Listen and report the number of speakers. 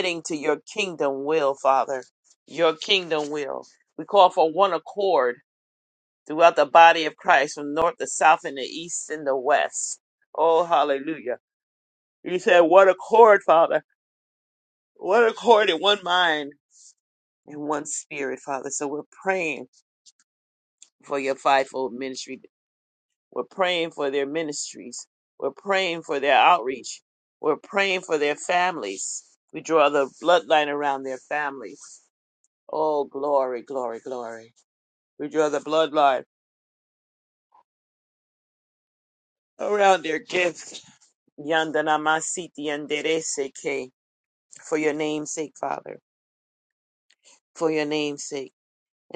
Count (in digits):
1